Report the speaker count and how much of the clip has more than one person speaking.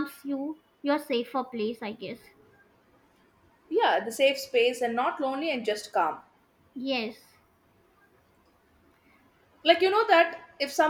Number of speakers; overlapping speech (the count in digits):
2, no overlap